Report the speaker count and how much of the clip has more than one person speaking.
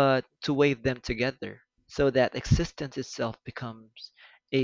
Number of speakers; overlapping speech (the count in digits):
1, no overlap